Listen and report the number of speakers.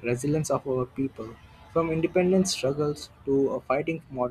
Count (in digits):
1